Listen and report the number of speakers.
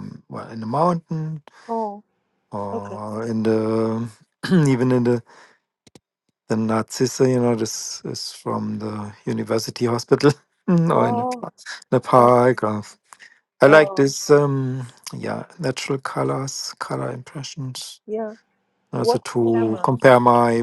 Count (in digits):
2